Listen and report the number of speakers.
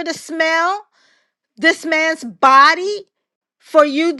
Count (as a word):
one